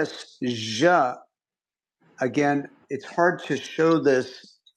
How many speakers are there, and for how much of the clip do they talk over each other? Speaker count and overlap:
one, no overlap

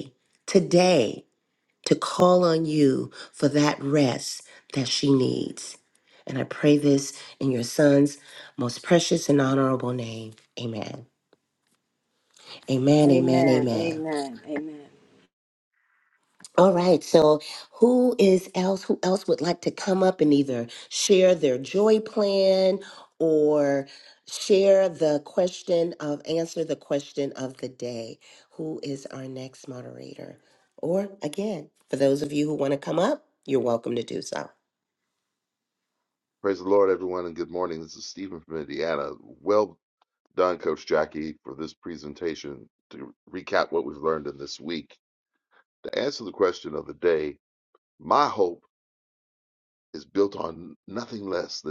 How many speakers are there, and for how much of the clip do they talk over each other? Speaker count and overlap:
three, about 2%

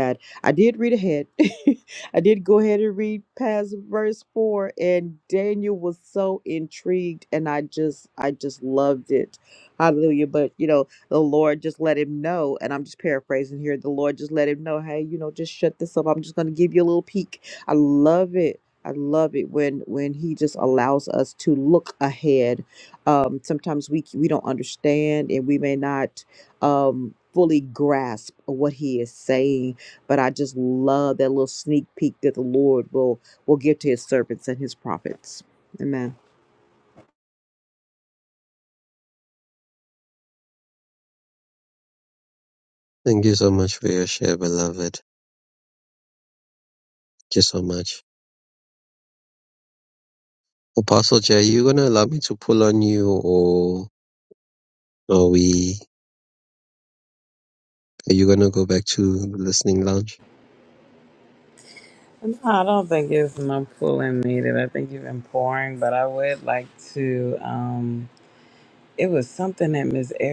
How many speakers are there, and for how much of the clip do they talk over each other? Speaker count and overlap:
three, no overlap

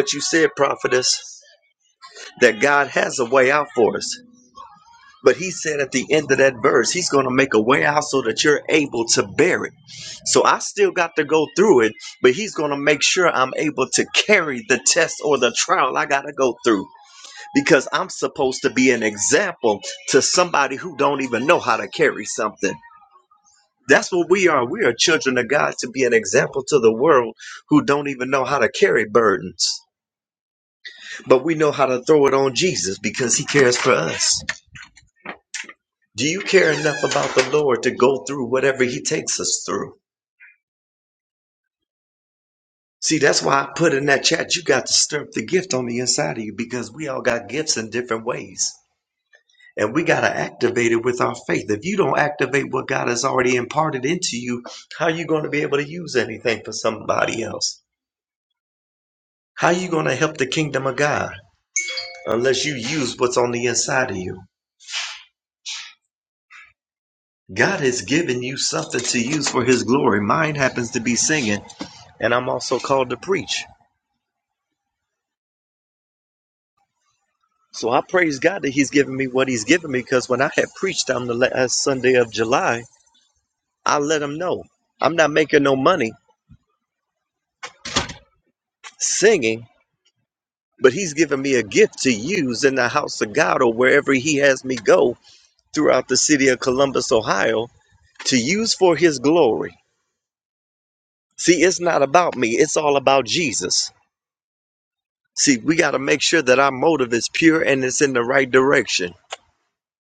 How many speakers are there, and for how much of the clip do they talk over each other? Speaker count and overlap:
one, no overlap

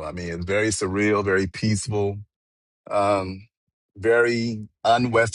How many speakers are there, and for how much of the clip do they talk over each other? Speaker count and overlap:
one, no overlap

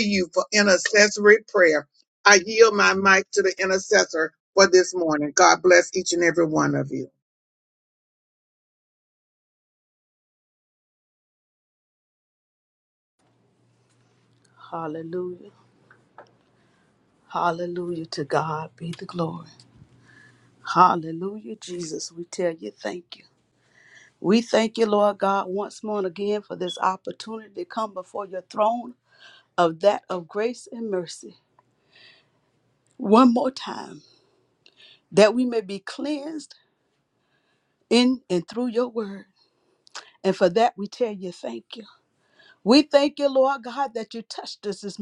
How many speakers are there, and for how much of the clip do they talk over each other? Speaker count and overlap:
two, no overlap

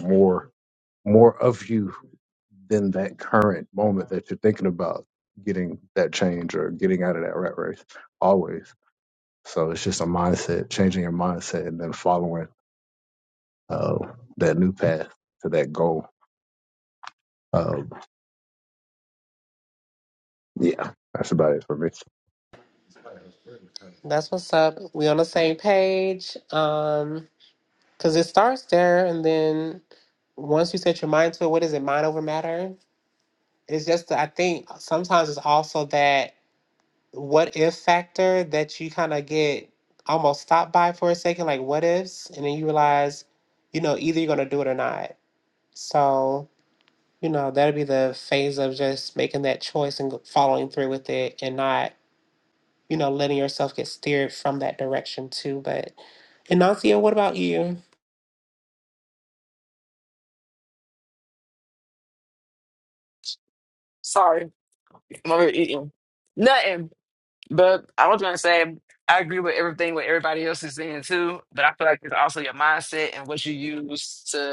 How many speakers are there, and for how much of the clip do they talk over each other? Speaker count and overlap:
three, no overlap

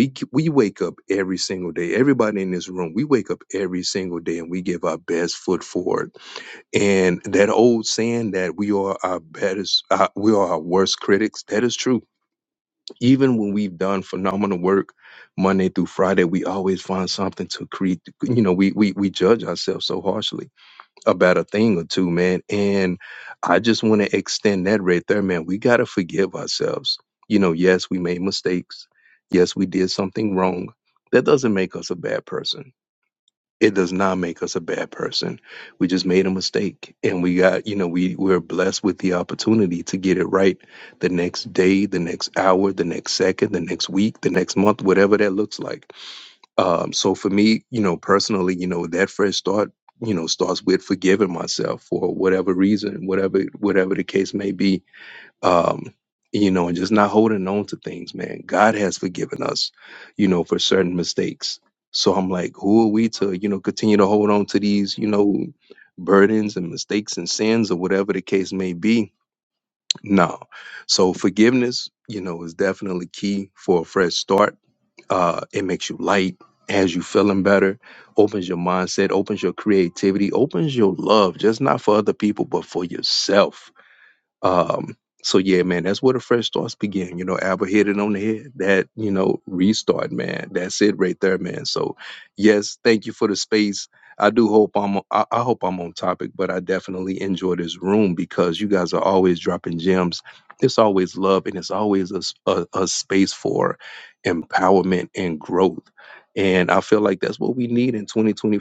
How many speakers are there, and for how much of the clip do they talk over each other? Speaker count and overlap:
one, no overlap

